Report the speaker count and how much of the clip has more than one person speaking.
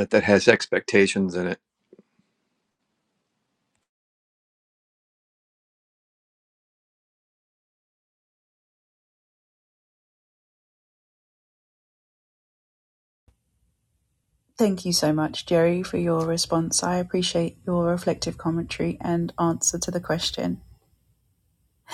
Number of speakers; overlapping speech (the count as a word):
two, no overlap